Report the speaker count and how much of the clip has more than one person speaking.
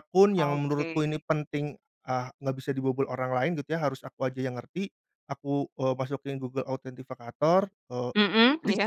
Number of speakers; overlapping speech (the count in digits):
2, about 12%